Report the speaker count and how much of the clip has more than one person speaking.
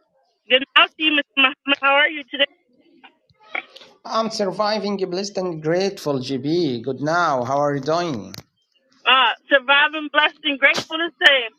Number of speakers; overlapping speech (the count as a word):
two, no overlap